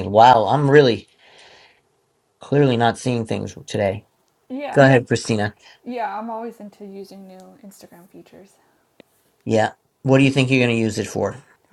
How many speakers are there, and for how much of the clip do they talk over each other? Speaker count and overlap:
two, about 1%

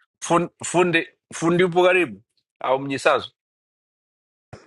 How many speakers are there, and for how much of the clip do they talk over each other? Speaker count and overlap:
one, no overlap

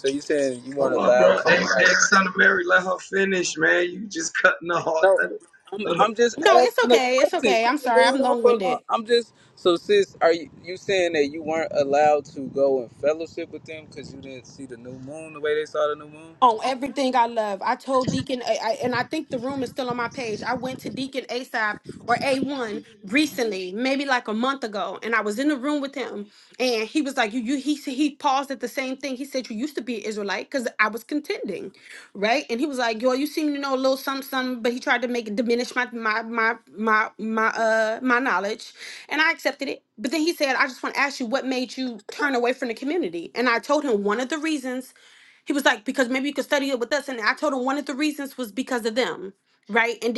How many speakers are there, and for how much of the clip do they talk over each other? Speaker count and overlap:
three, about 8%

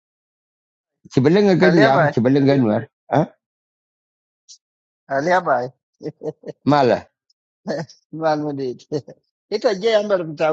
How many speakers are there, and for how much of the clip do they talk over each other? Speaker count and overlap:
two, about 5%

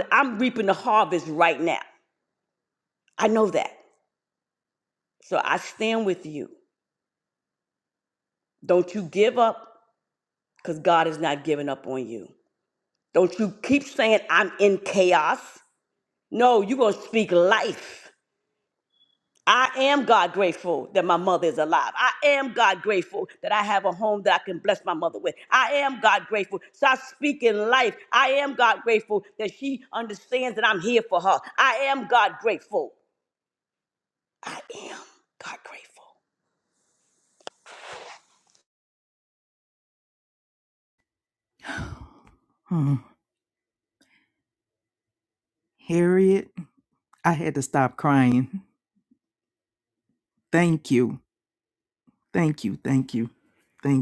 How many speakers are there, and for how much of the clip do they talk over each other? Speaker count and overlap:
two, no overlap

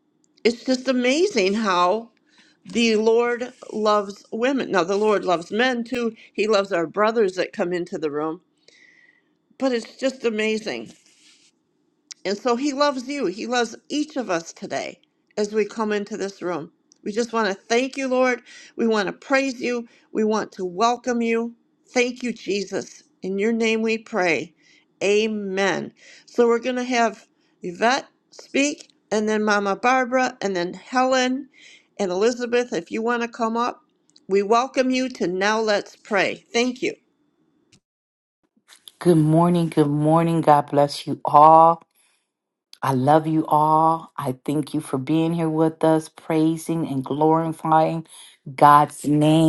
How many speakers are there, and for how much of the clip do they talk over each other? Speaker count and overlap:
two, no overlap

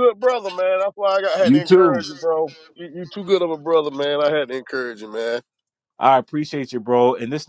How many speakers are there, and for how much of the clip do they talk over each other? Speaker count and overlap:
two, about 9%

